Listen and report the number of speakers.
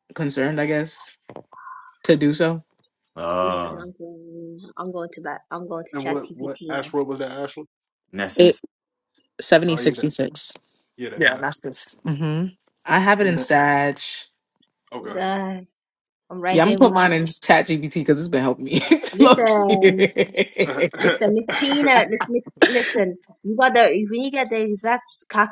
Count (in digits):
4